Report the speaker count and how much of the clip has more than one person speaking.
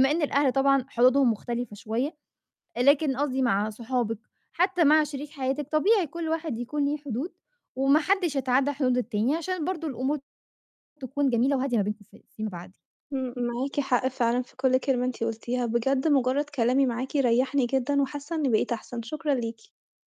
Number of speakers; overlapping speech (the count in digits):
2, no overlap